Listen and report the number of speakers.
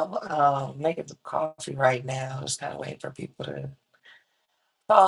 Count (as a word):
one